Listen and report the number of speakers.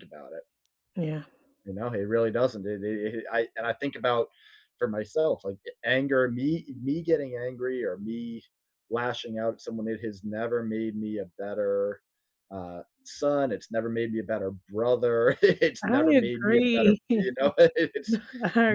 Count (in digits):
2